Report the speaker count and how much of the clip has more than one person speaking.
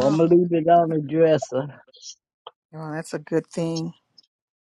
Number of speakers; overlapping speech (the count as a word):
two, about 3%